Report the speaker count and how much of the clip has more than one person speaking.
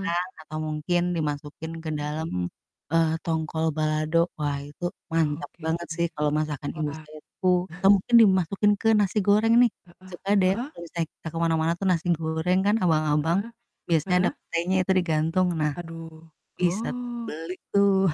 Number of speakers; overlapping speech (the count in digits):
2, about 11%